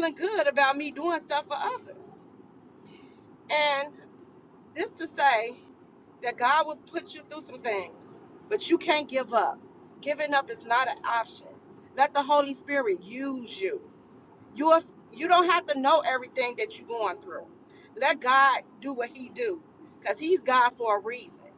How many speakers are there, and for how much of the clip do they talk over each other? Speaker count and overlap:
one, no overlap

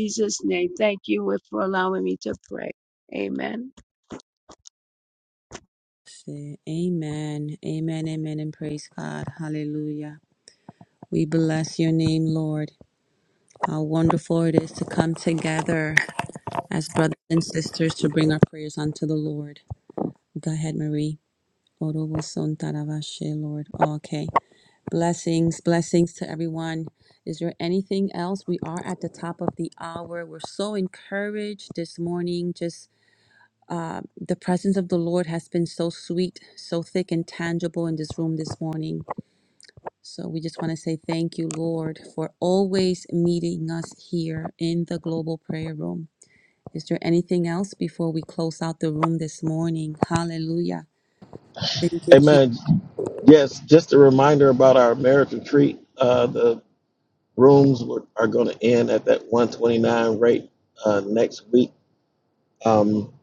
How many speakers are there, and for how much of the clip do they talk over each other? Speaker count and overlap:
three, under 1%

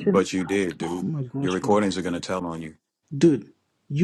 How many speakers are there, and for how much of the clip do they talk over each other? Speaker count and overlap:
two, about 20%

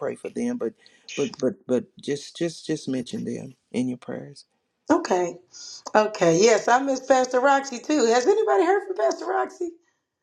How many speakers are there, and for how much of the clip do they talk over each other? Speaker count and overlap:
two, no overlap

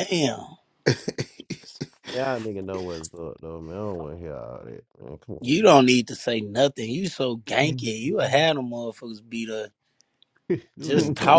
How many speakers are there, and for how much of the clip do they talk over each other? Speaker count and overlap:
two, about 7%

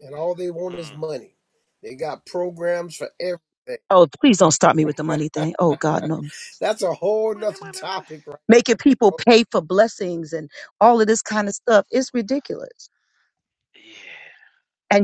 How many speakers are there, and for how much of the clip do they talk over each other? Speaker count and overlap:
three, about 10%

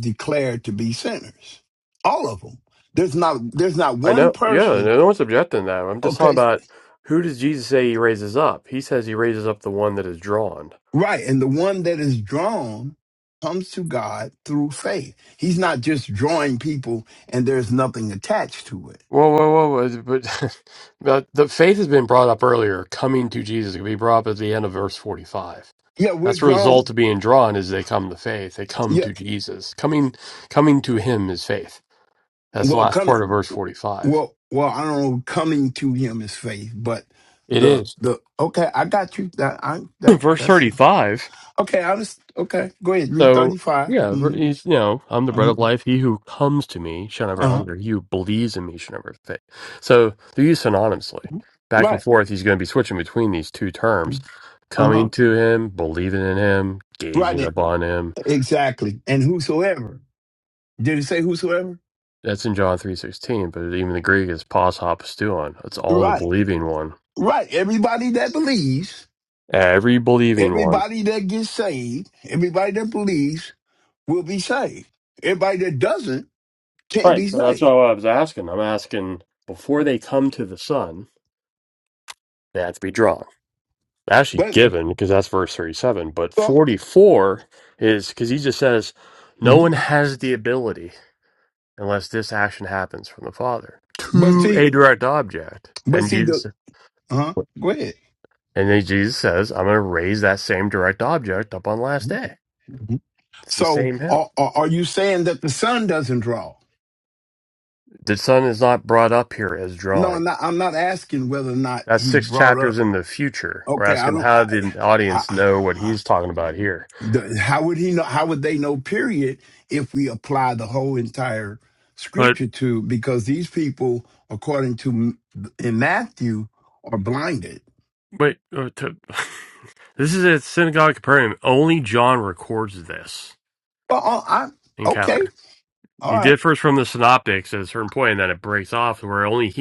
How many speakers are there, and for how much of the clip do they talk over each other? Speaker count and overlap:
two, about 10%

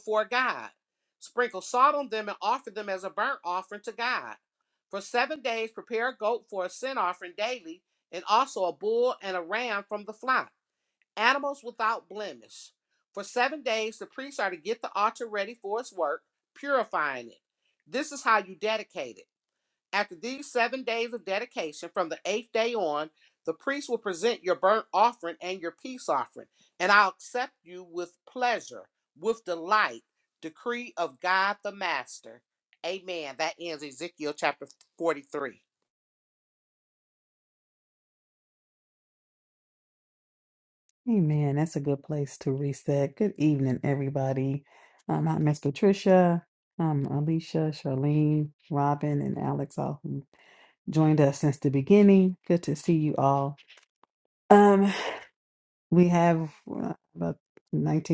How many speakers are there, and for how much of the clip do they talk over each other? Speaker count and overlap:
two, no overlap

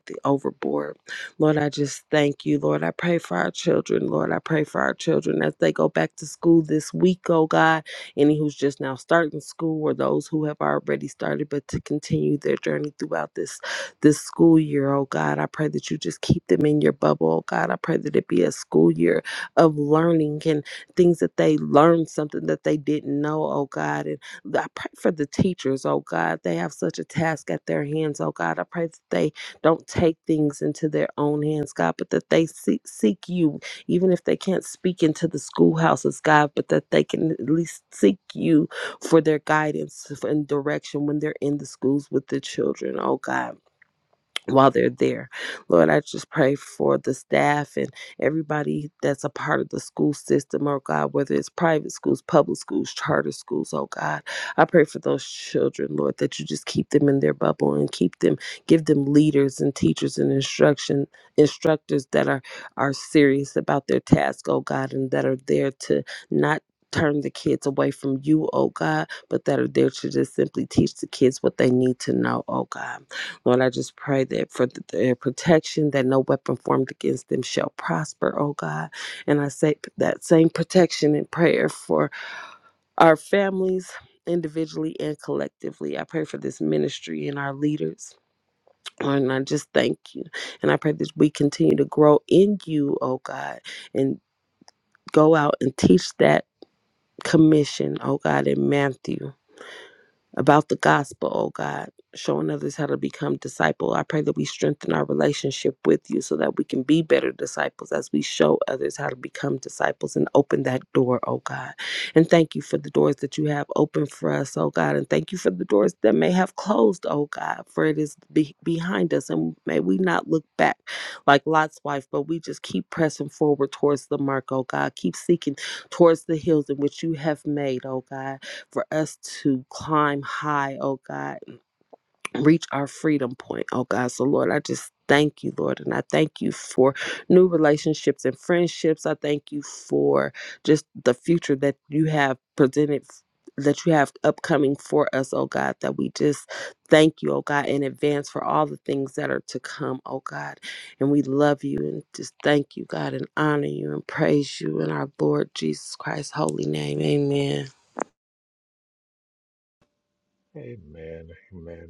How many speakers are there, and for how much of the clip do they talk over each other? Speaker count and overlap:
two, no overlap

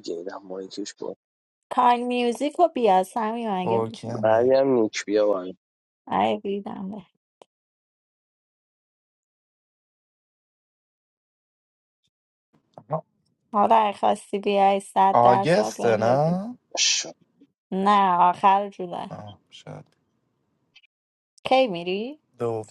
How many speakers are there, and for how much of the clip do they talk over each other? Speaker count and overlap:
three, about 9%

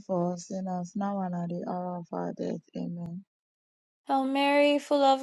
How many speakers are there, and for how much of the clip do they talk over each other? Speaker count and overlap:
two, no overlap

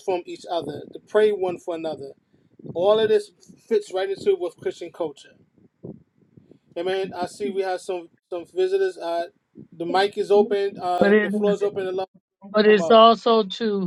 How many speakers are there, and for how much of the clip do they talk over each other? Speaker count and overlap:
two, about 7%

